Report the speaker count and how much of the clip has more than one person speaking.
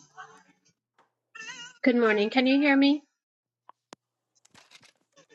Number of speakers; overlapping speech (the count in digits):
1, no overlap